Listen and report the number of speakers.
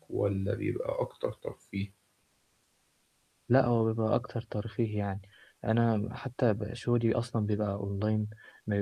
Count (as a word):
two